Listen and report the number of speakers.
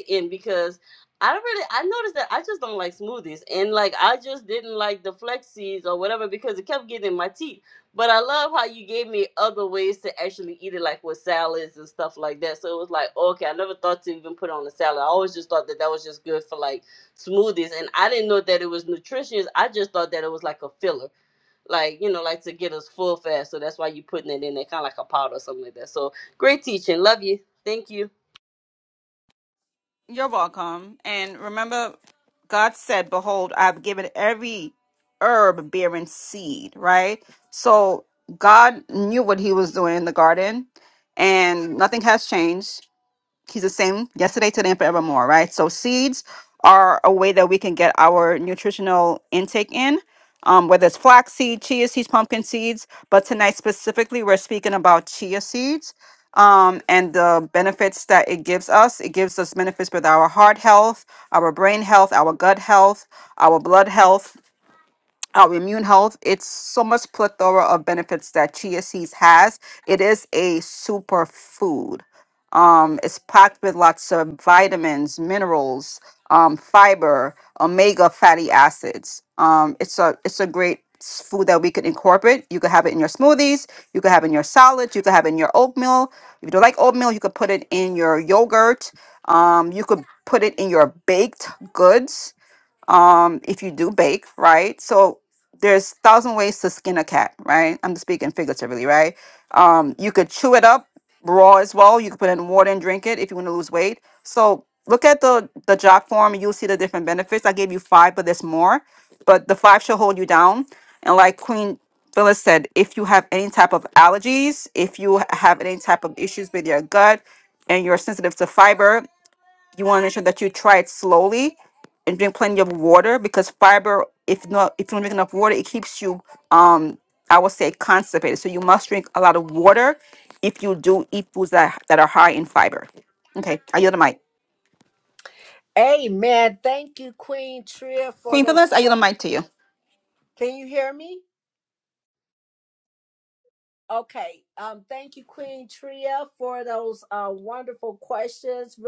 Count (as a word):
three